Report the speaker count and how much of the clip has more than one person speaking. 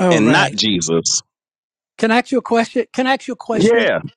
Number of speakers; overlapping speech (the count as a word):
two, about 19%